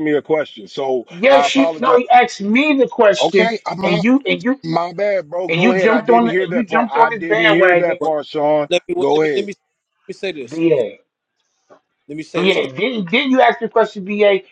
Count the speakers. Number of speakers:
three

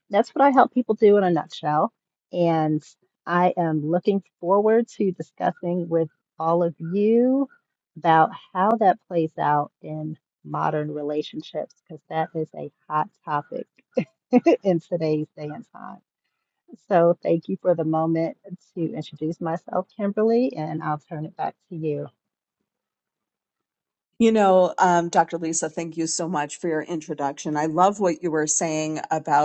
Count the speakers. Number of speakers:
two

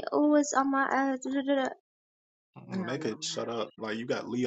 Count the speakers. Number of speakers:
two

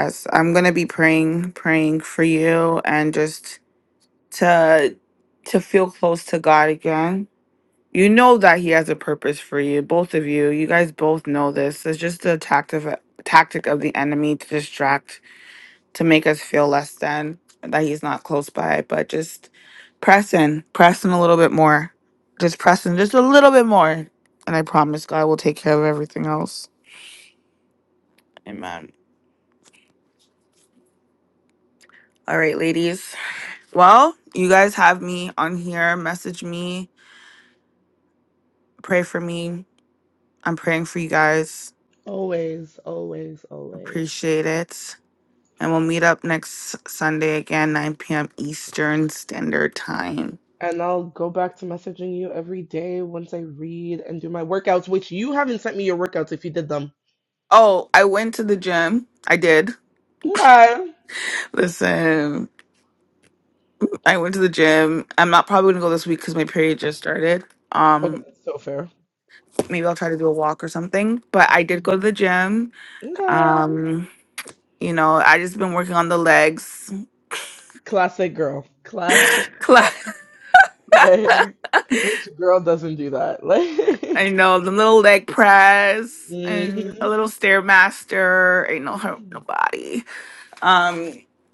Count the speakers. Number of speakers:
two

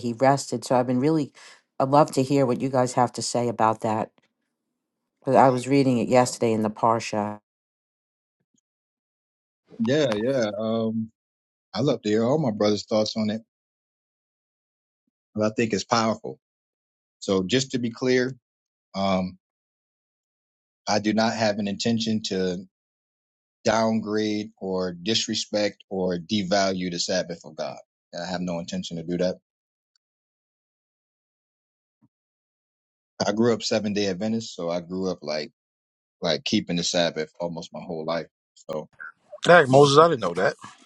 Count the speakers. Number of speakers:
three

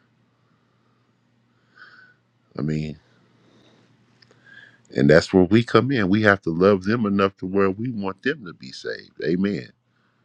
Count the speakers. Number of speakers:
one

